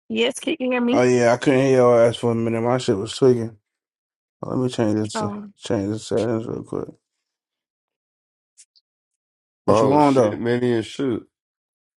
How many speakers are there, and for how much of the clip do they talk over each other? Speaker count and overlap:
3, about 8%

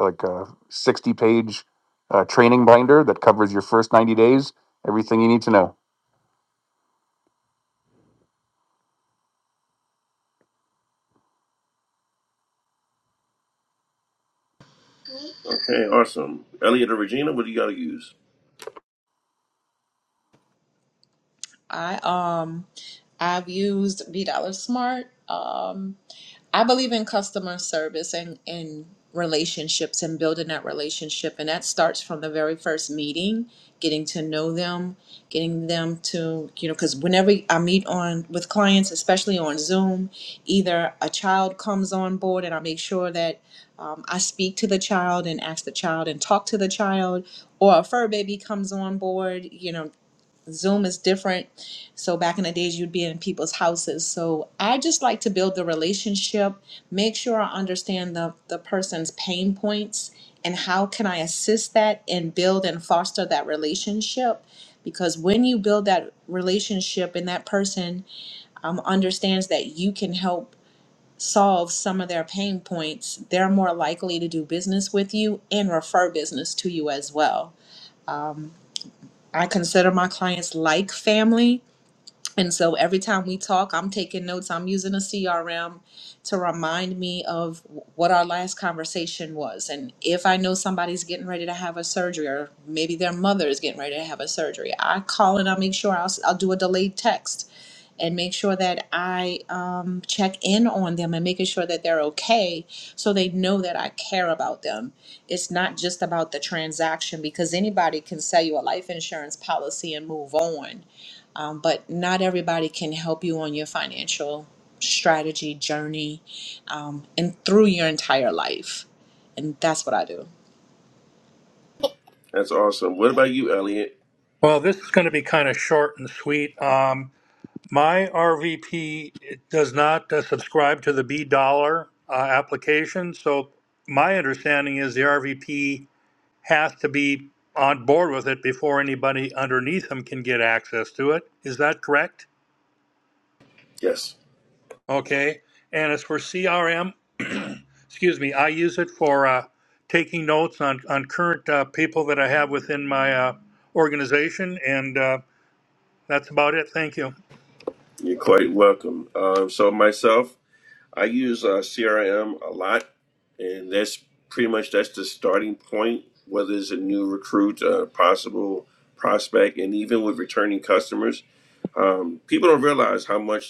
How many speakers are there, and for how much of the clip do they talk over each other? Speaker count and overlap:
4, no overlap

